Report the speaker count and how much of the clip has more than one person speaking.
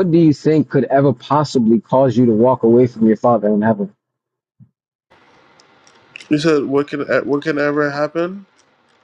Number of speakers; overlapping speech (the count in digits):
2, no overlap